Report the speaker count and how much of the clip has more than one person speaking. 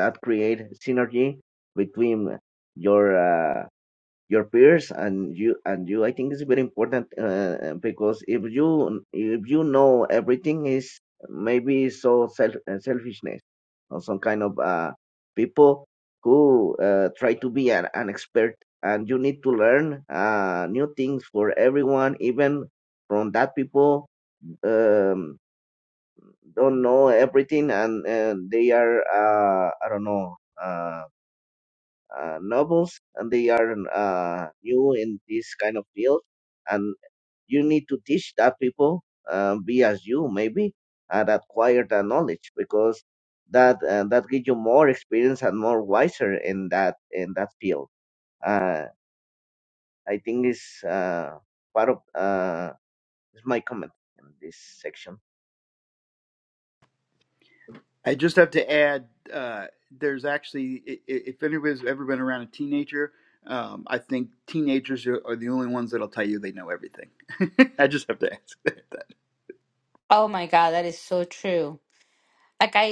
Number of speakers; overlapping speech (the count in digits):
3, no overlap